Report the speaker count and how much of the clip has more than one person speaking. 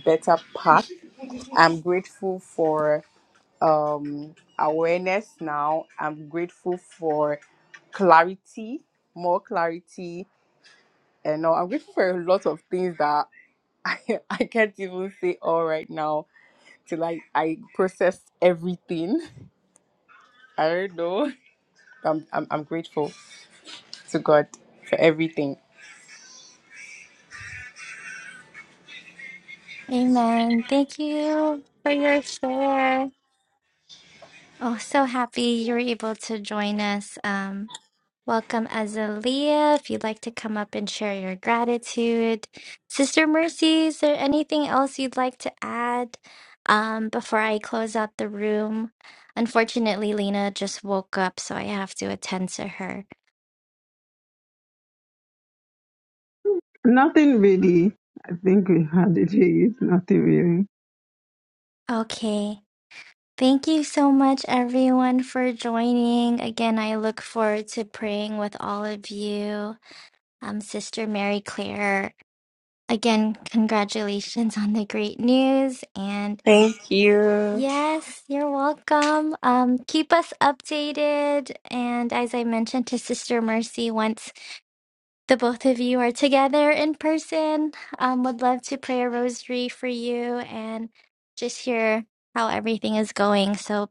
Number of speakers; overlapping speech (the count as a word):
three, under 1%